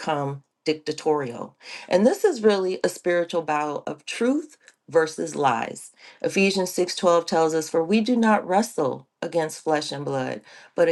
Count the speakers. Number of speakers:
one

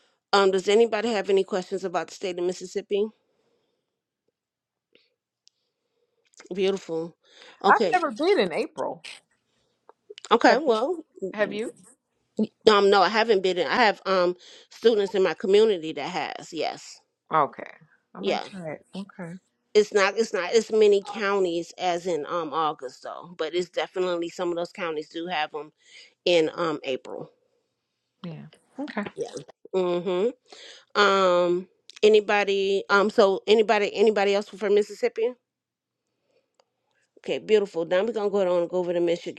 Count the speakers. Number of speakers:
two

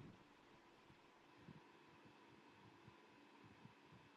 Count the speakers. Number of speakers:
zero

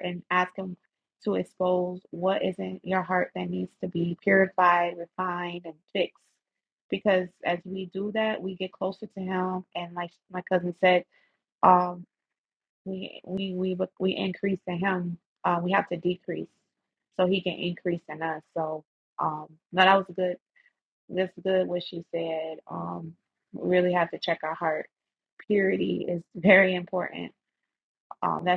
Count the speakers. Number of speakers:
one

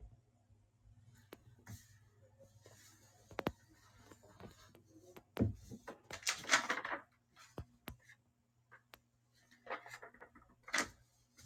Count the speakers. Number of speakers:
zero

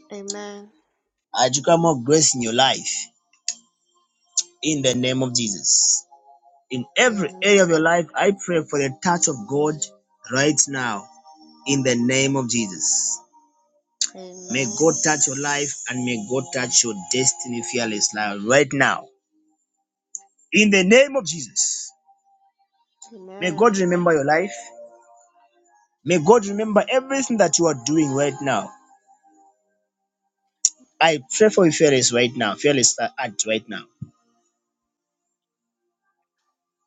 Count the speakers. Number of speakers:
two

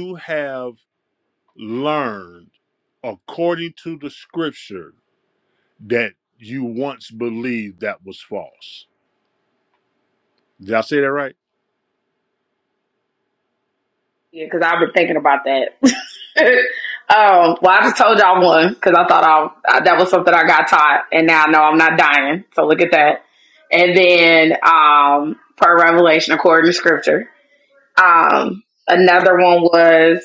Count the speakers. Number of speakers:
two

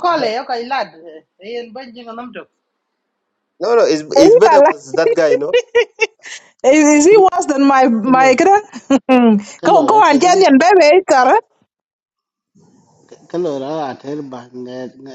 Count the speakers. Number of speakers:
four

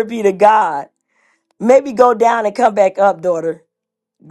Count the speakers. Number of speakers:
one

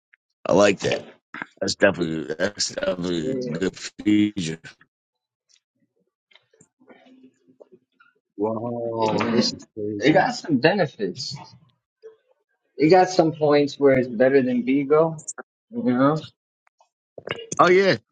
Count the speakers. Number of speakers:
three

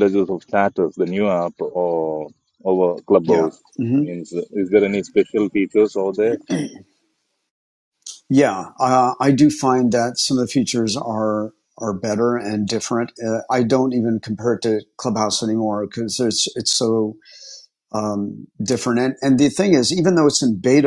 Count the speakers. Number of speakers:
two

